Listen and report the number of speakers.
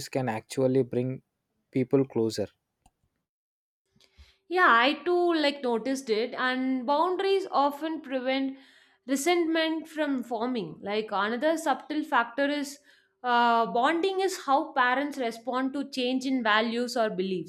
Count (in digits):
2